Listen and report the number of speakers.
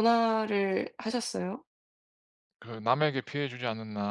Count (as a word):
two